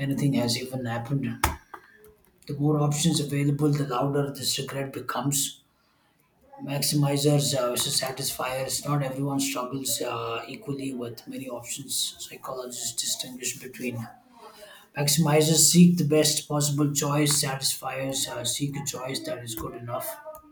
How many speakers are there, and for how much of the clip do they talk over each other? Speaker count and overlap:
1, no overlap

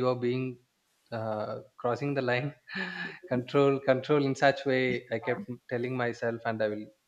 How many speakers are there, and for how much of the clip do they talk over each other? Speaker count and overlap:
1, no overlap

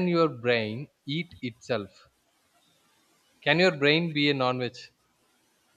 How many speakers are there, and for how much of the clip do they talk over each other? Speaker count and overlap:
1, no overlap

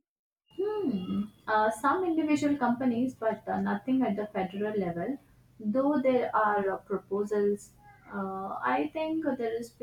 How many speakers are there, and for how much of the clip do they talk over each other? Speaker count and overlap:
1, no overlap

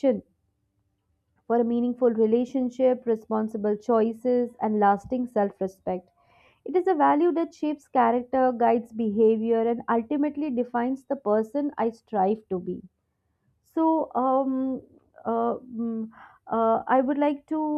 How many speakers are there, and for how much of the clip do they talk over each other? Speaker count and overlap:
1, no overlap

